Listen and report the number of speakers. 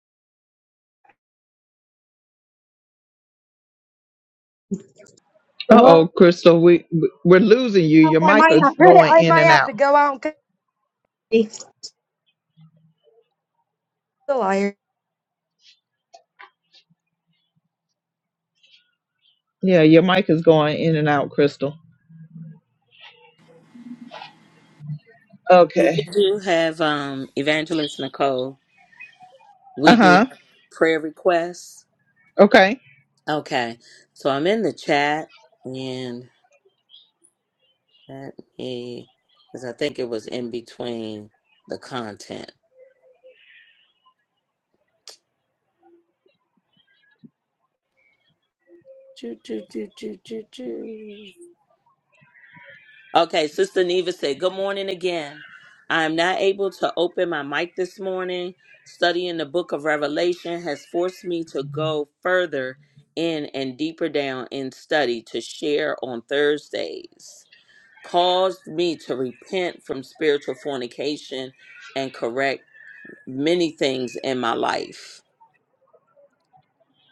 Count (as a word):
three